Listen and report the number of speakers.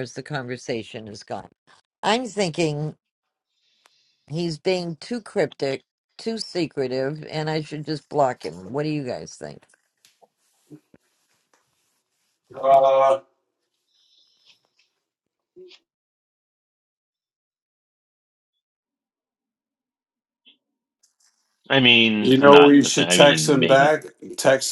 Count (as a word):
three